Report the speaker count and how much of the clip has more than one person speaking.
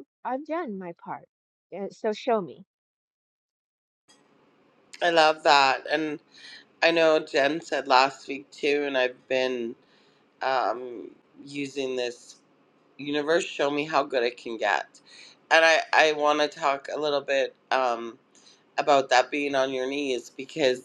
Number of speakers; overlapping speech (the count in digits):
2, no overlap